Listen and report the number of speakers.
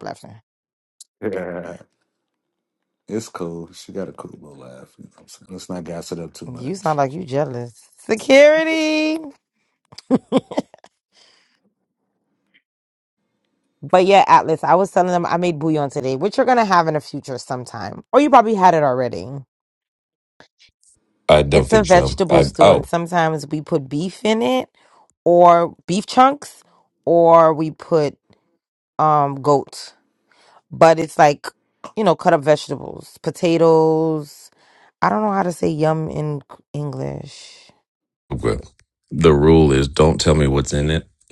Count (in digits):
3